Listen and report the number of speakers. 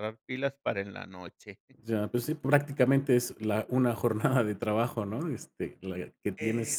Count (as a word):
two